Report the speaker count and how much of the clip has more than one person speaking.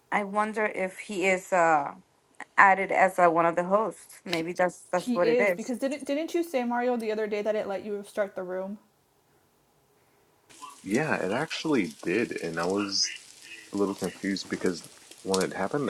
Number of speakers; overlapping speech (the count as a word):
three, about 4%